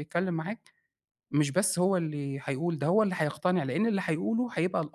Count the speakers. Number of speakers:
one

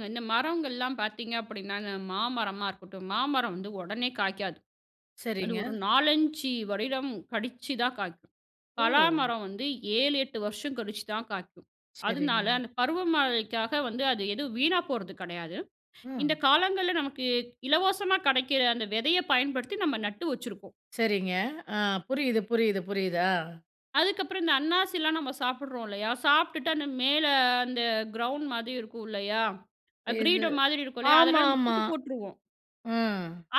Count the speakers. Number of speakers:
two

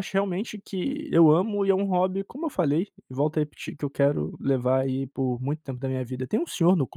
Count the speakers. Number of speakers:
one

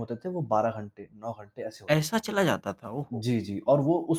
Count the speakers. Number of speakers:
two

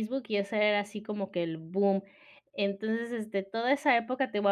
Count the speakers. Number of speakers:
one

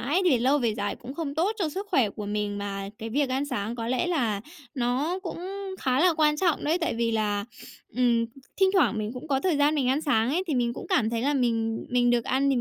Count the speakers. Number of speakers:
one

